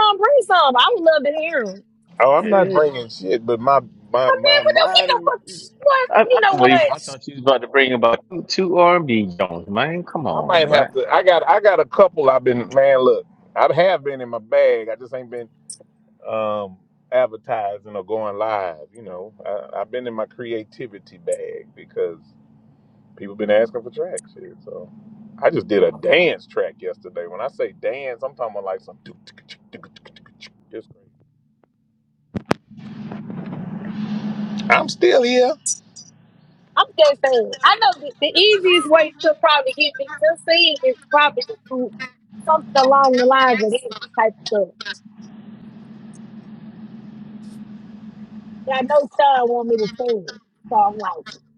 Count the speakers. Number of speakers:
3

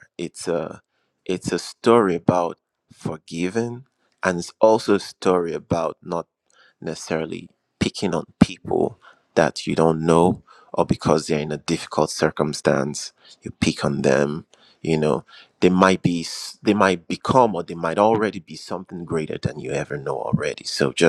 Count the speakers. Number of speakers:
1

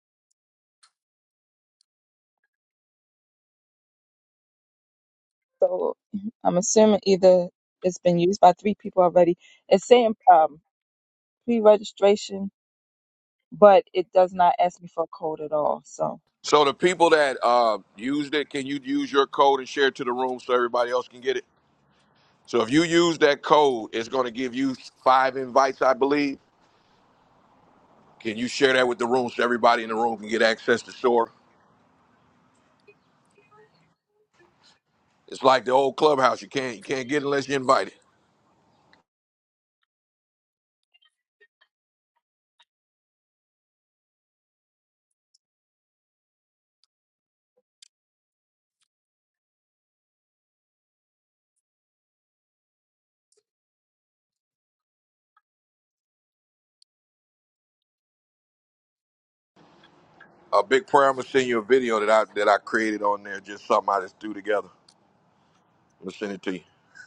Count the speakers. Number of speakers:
2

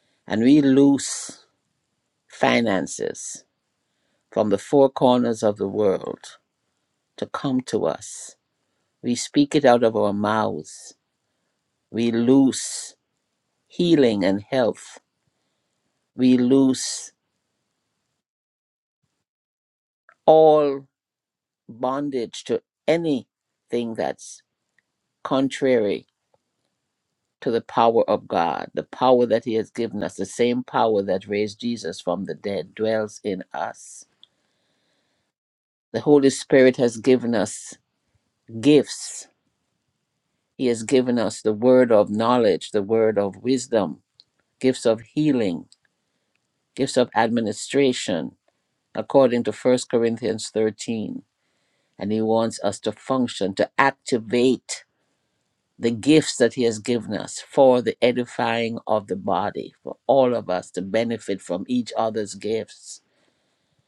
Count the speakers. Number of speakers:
1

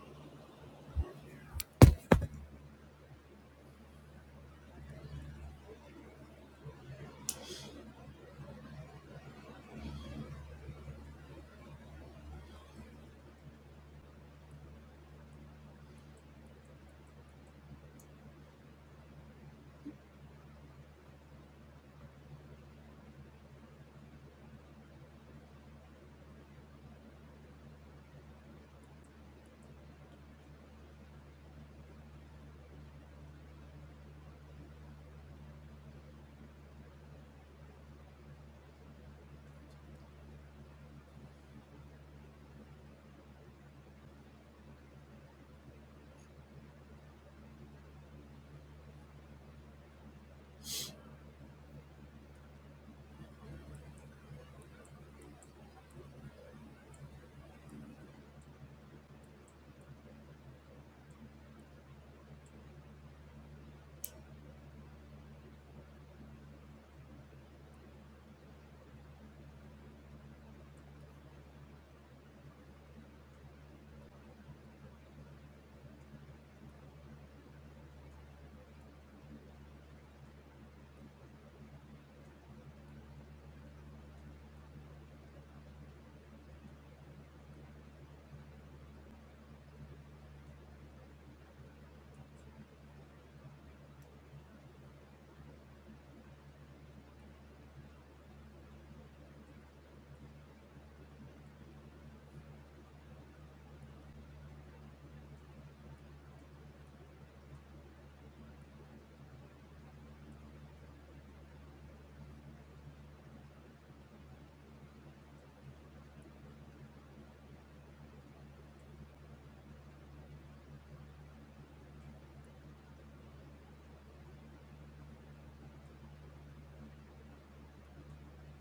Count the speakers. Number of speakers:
0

